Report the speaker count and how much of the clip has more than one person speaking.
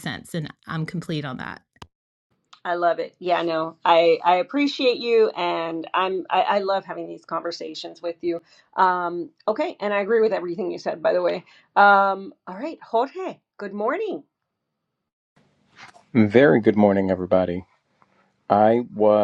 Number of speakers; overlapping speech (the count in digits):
3, no overlap